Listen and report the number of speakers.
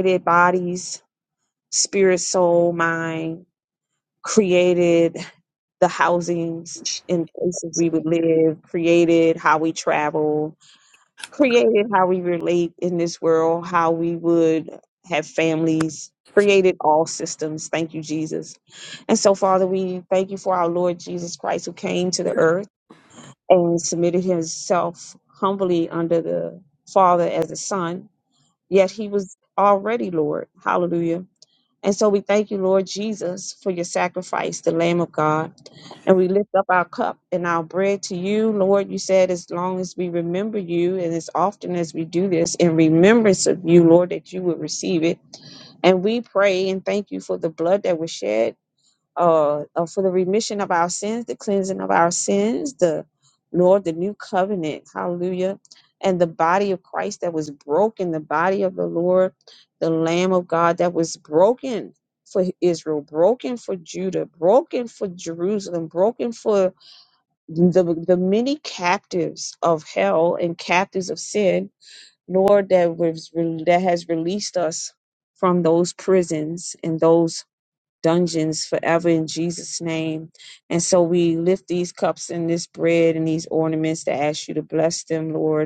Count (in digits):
1